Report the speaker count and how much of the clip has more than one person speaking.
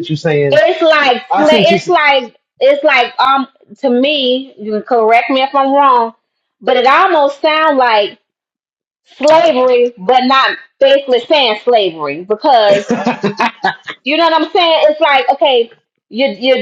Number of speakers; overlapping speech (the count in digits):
2, about 4%